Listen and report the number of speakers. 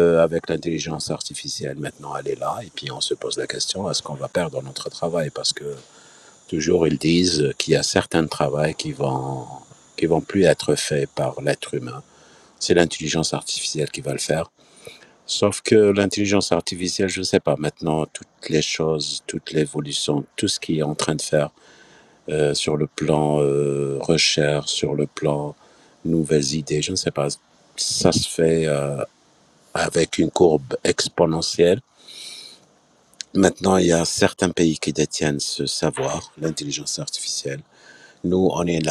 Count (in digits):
1